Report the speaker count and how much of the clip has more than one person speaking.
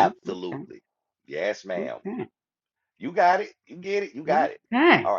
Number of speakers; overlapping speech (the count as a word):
two, about 25%